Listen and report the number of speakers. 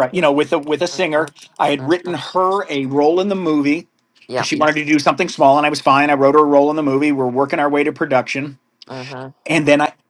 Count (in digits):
2